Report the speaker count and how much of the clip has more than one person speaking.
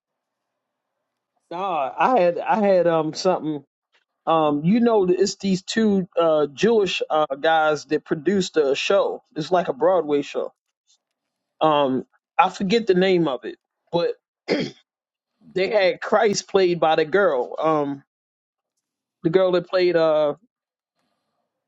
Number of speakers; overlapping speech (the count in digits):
1, no overlap